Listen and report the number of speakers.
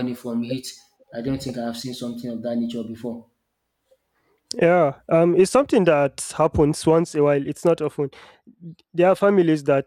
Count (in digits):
2